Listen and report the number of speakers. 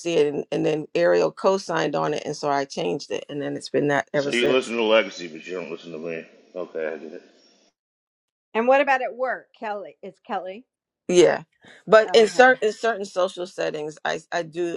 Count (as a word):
three